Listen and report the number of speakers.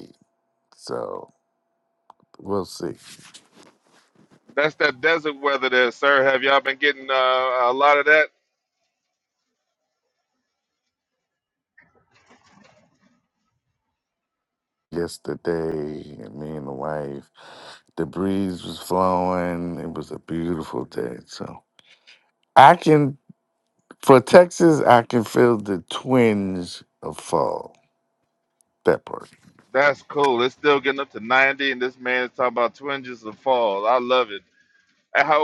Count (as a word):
two